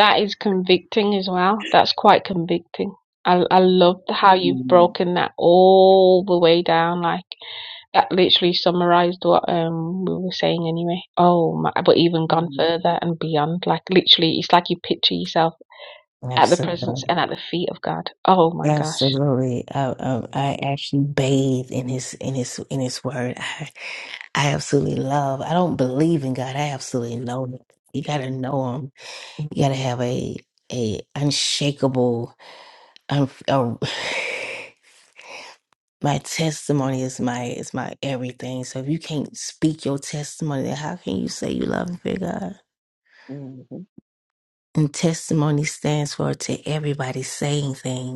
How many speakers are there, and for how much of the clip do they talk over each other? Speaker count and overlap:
3, about 4%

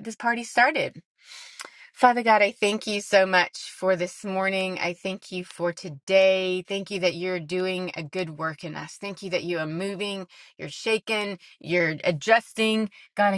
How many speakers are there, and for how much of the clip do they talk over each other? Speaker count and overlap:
1, no overlap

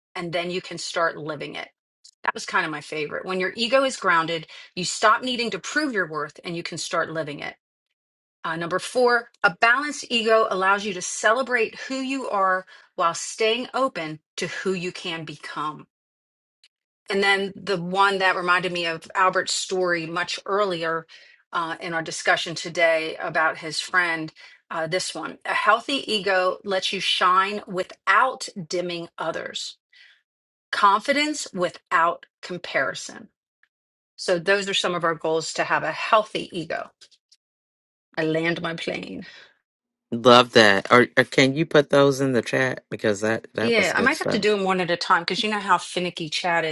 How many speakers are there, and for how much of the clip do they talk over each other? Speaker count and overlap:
2, about 2%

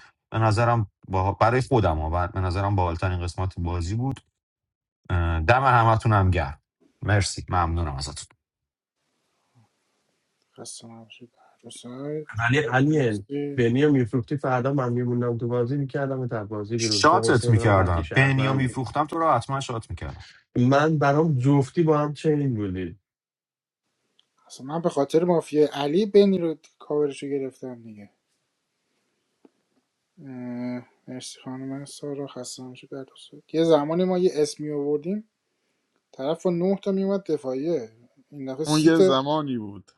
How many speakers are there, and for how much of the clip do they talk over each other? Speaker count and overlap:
4, about 7%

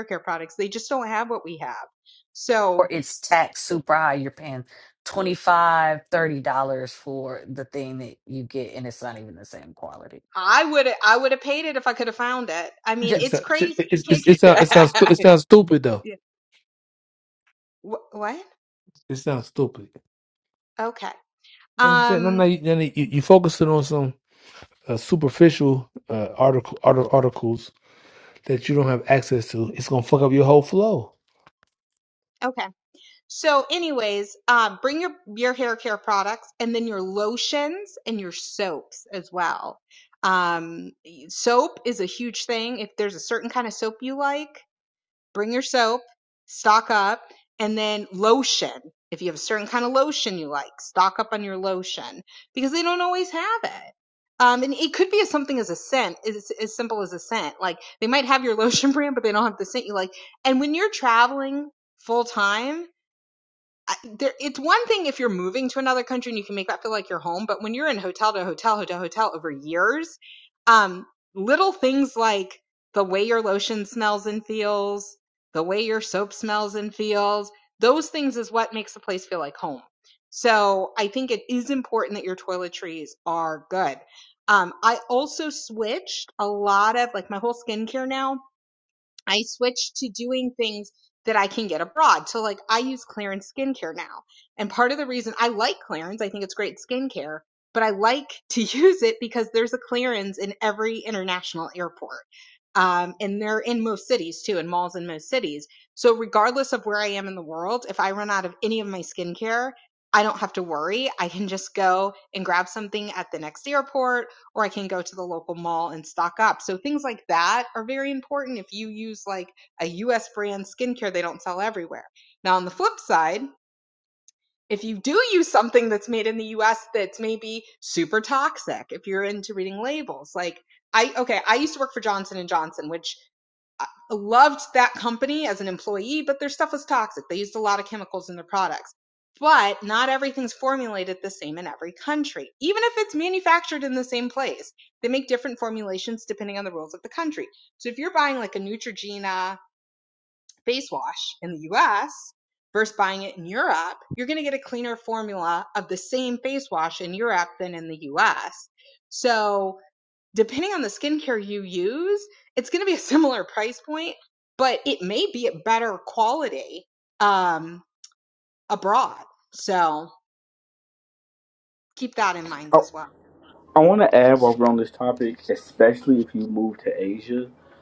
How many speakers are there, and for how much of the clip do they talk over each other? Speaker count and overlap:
4, about 2%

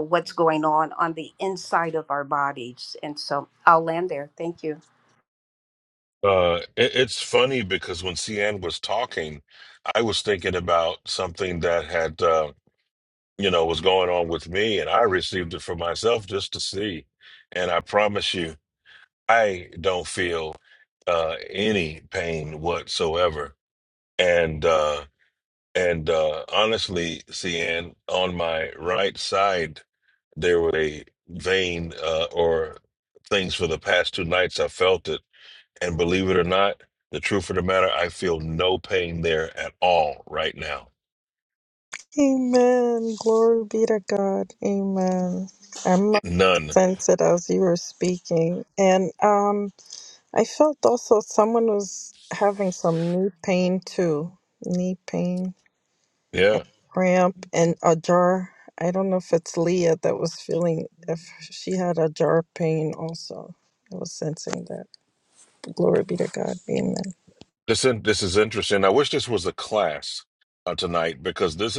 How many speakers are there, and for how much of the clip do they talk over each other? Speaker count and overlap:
3, no overlap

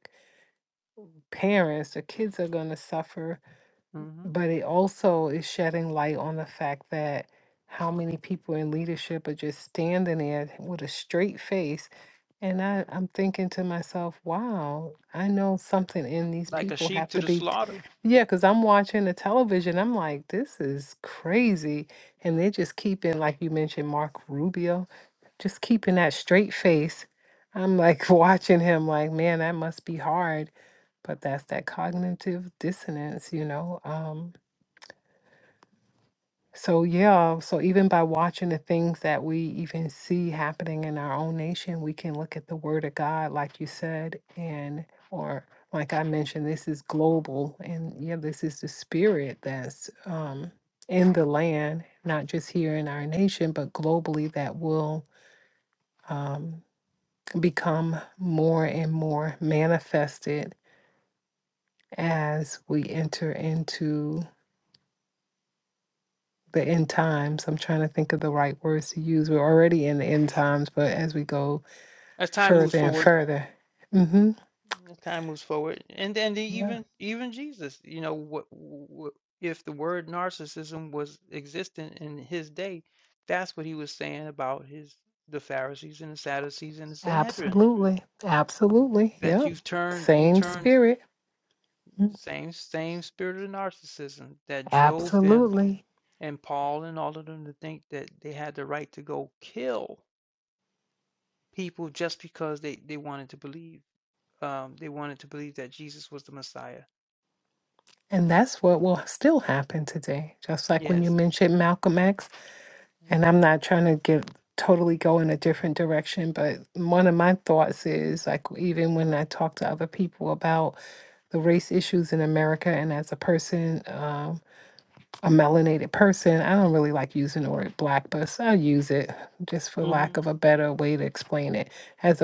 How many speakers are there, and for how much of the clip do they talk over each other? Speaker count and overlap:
2, about 4%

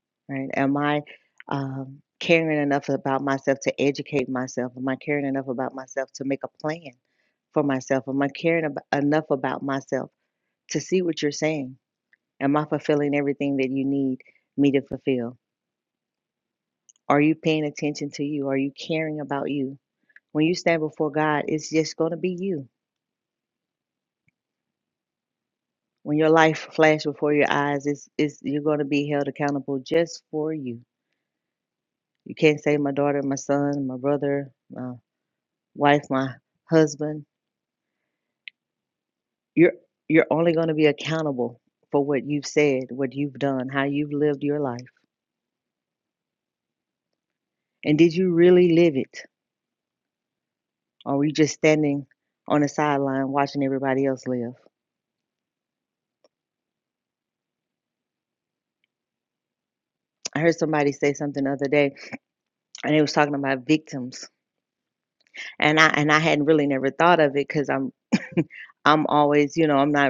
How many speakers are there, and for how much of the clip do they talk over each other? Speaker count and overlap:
1, no overlap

